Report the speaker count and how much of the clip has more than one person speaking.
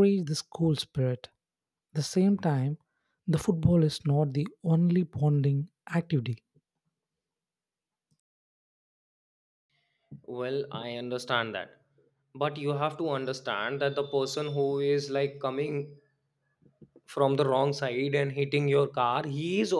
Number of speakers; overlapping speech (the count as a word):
two, no overlap